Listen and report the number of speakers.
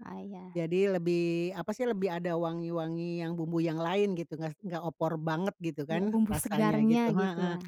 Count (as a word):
two